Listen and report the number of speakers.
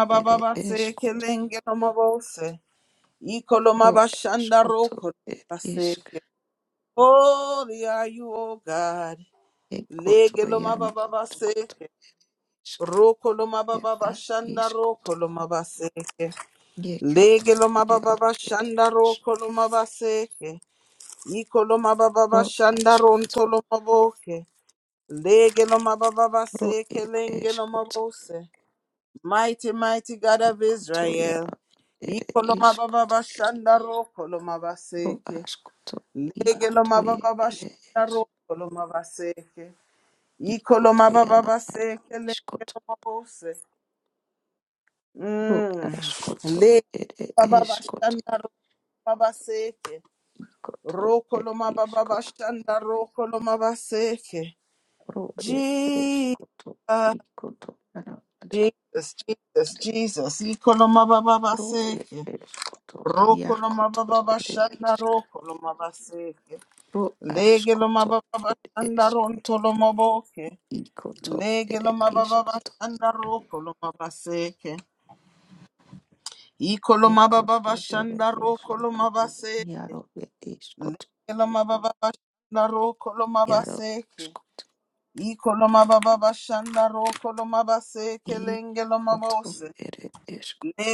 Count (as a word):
two